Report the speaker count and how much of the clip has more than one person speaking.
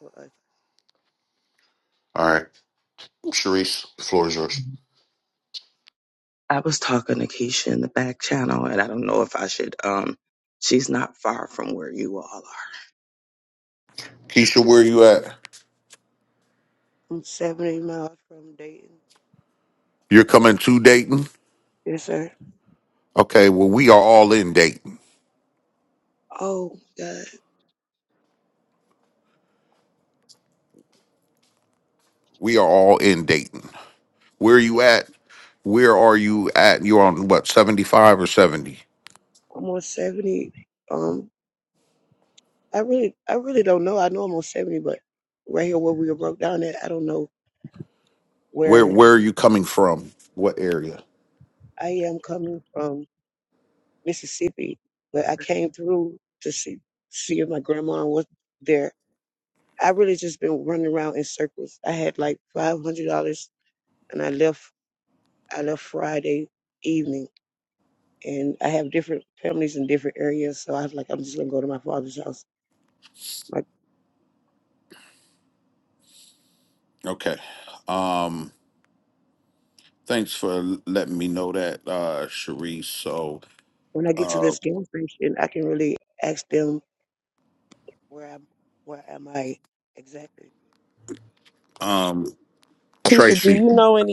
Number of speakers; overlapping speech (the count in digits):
4, about 1%